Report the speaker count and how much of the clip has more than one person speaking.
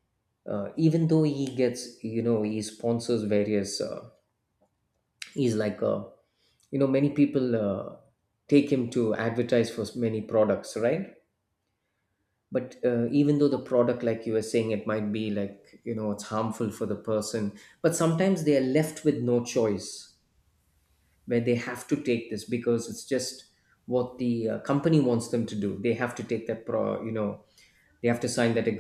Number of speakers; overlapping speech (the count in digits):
1, no overlap